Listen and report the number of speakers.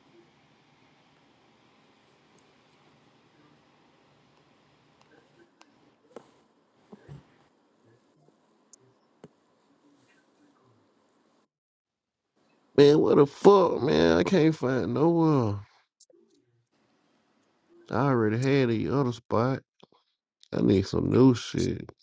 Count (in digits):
1